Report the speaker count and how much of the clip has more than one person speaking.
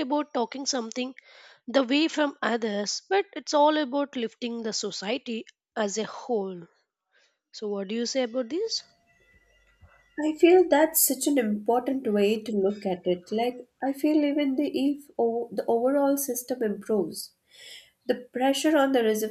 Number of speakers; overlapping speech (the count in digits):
2, no overlap